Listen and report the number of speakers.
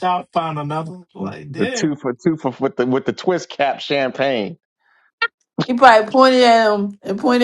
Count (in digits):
3